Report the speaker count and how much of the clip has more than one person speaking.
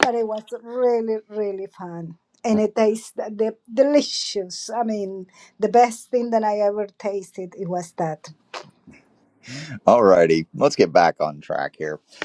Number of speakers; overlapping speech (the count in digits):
2, no overlap